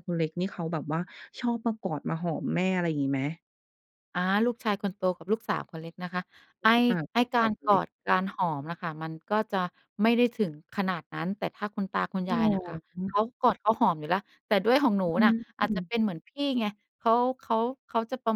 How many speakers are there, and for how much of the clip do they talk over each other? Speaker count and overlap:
2, about 6%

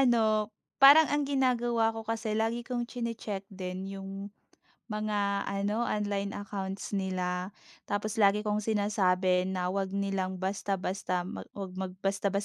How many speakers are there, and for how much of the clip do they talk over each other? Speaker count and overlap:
1, no overlap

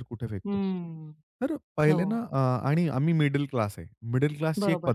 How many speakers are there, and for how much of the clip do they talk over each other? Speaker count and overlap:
2, about 16%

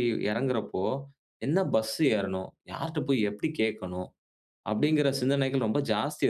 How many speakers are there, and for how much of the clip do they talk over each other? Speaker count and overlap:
1, no overlap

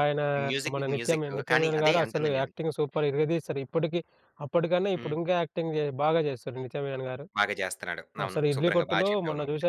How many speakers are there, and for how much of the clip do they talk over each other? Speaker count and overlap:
2, about 35%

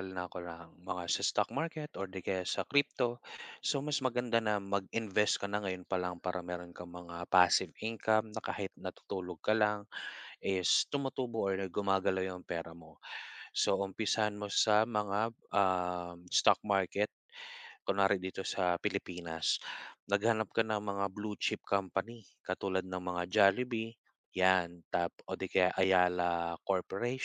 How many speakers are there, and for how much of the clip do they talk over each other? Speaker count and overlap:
1, no overlap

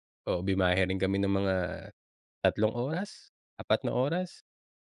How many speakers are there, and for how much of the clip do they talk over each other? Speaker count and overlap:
1, no overlap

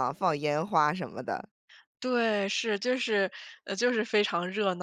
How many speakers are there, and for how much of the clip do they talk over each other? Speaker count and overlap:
2, no overlap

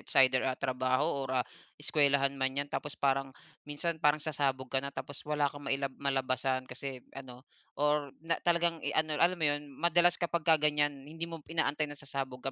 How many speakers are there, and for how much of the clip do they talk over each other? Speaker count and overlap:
1, no overlap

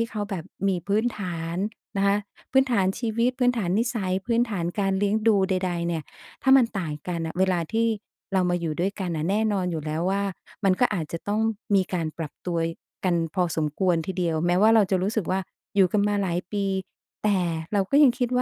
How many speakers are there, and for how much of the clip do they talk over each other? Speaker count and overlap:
1, no overlap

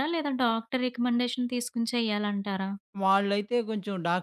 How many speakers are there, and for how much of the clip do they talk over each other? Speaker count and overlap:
2, no overlap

